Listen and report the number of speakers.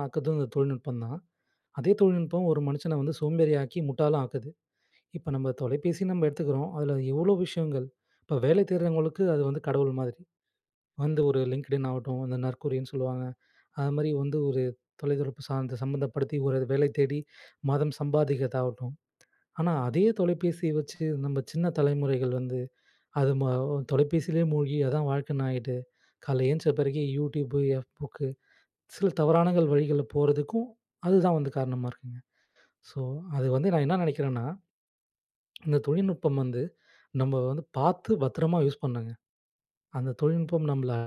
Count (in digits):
1